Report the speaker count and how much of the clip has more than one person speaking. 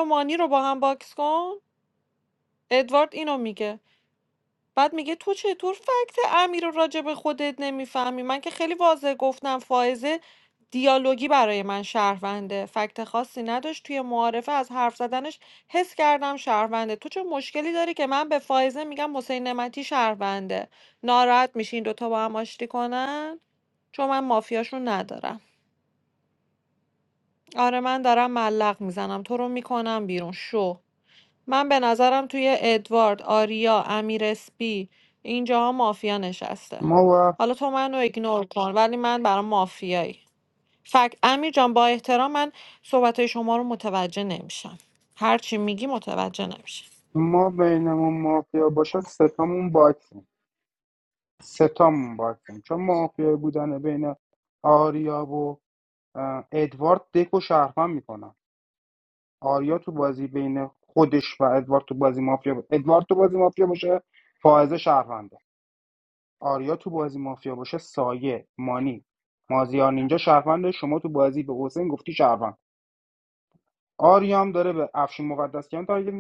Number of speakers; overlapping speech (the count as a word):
two, no overlap